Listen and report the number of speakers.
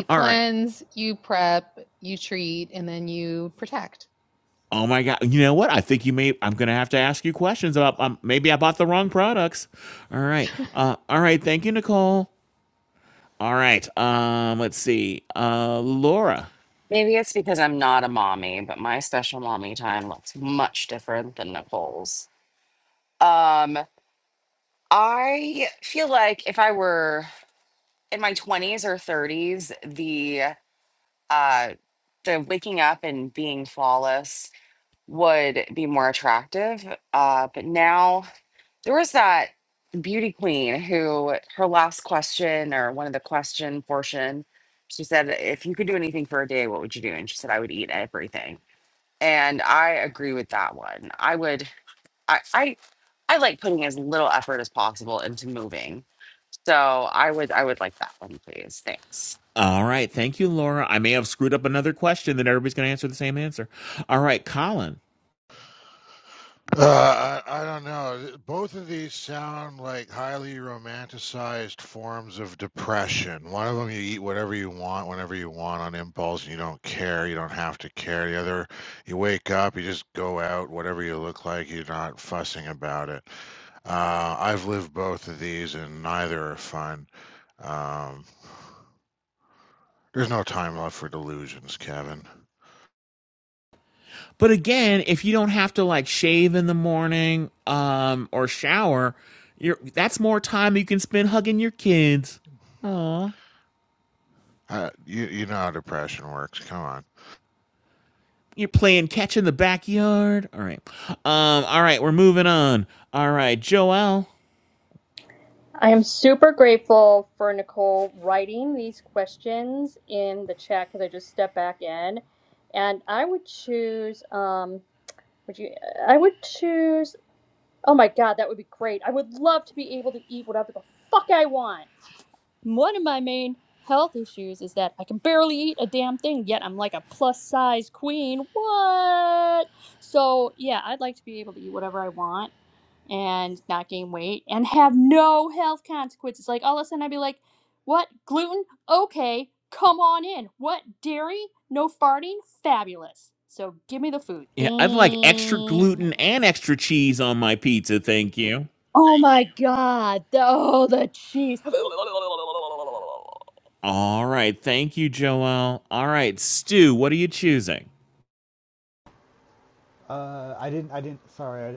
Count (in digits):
6